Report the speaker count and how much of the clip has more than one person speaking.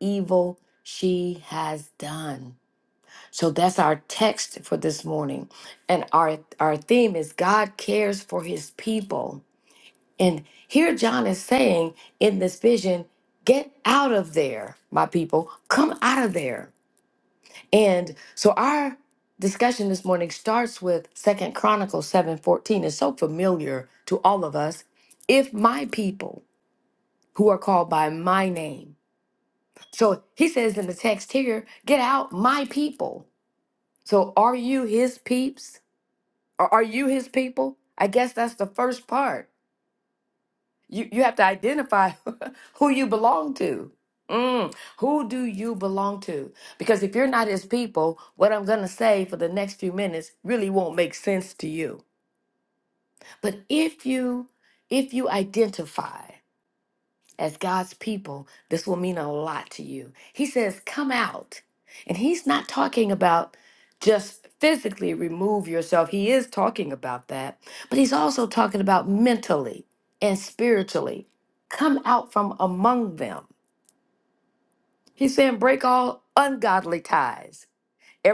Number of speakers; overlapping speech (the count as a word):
one, no overlap